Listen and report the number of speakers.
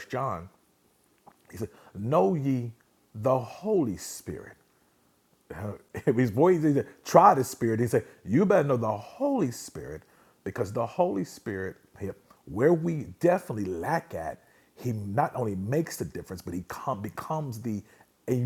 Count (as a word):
one